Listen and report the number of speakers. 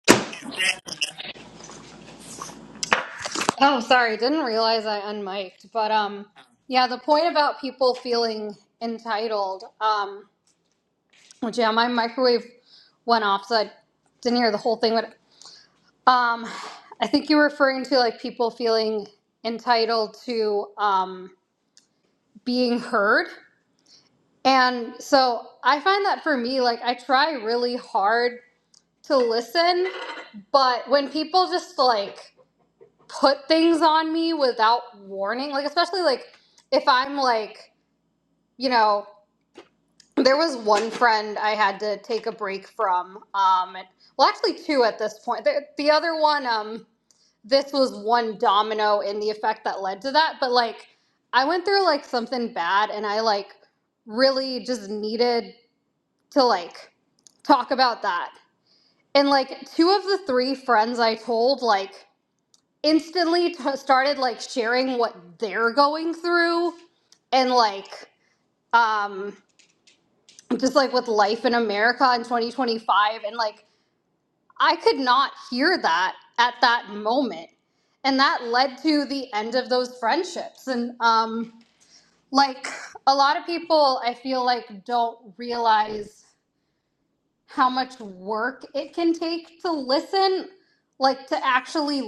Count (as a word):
one